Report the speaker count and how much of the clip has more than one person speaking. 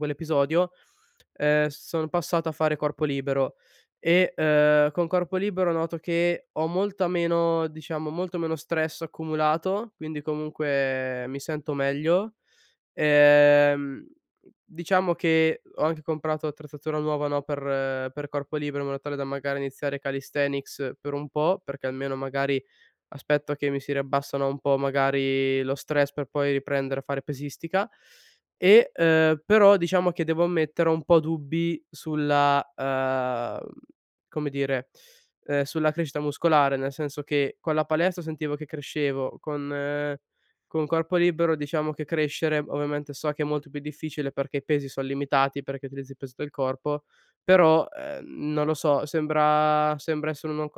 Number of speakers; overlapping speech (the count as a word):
one, no overlap